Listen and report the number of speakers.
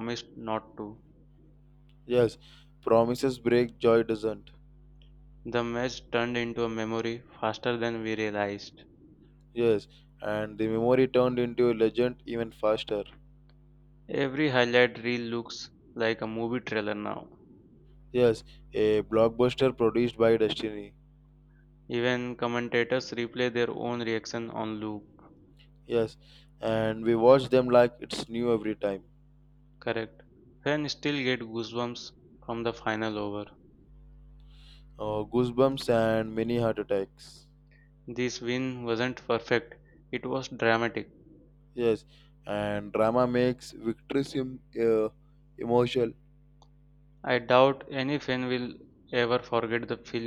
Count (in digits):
2